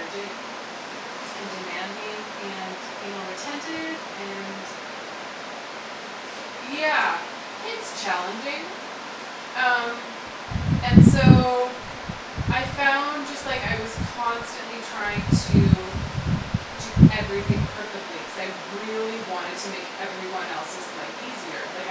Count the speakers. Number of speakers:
one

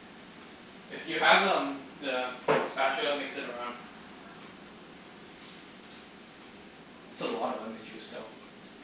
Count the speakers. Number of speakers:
one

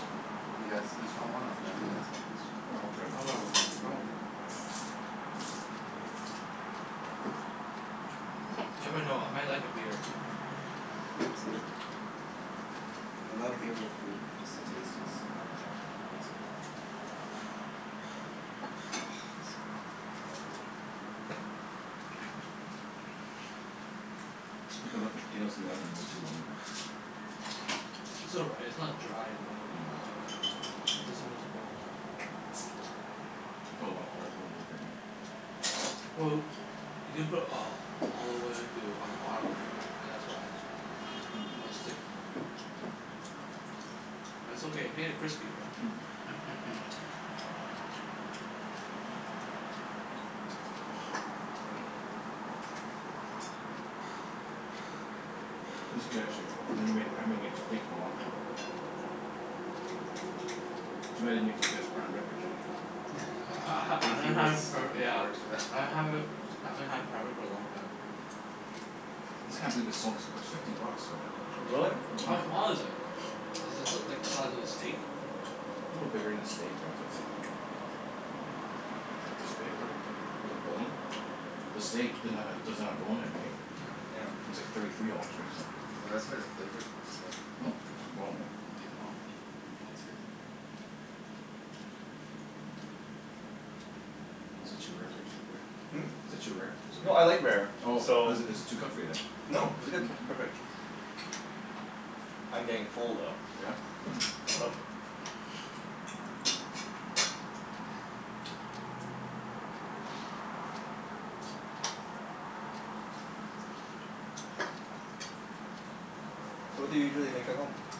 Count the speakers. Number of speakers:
four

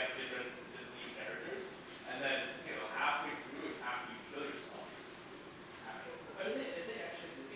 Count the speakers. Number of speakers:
two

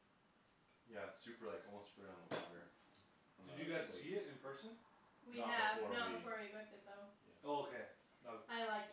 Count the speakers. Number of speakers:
three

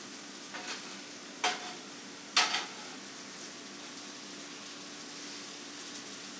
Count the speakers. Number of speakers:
zero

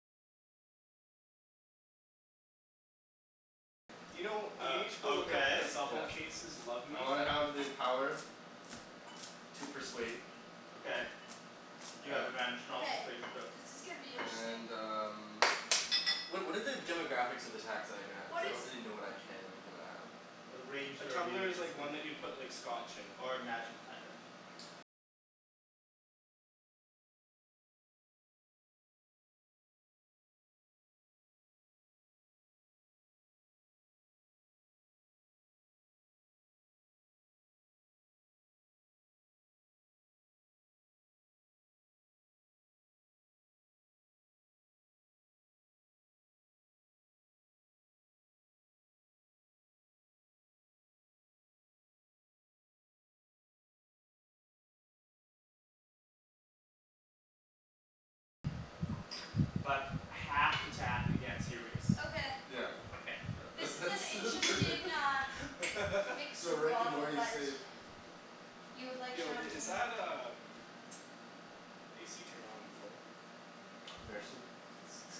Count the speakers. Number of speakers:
four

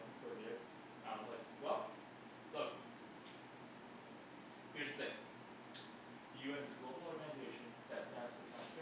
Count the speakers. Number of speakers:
one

